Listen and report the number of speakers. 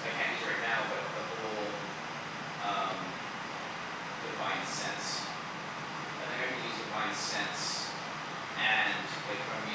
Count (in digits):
1